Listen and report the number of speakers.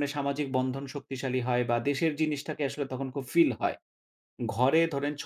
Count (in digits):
1